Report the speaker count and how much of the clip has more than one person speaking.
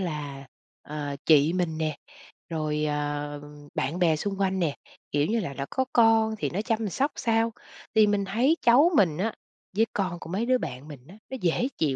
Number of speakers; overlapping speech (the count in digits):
1, no overlap